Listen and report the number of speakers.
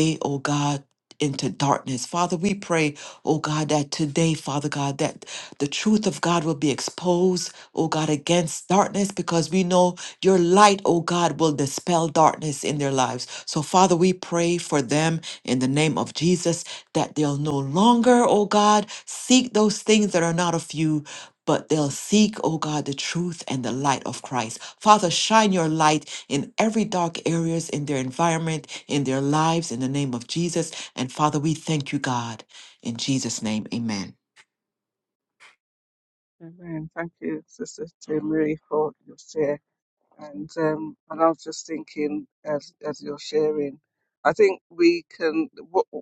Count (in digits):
2